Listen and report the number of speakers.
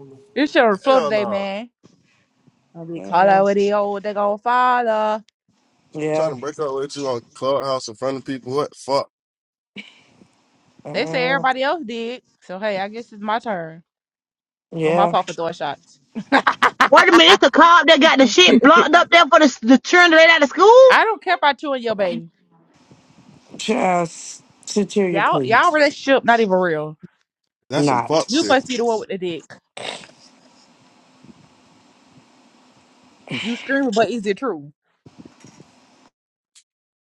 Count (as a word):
four